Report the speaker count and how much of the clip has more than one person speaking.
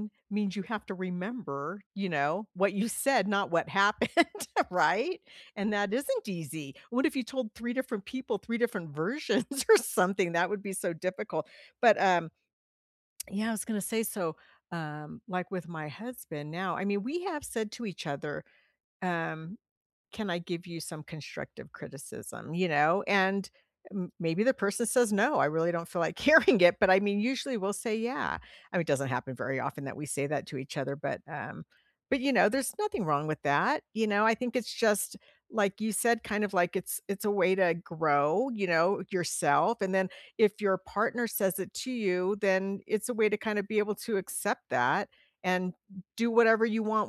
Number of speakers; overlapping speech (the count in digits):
1, no overlap